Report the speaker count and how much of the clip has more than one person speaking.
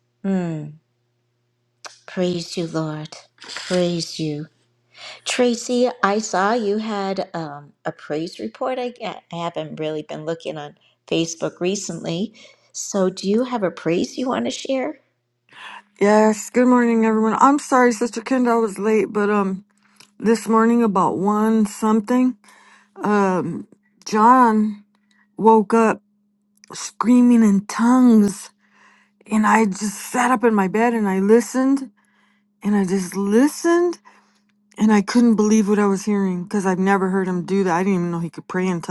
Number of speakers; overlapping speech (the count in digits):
2, no overlap